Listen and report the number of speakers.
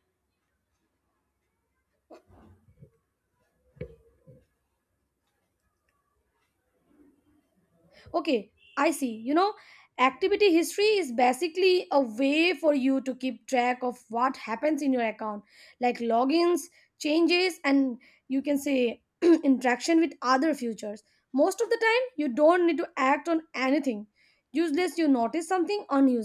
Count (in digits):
1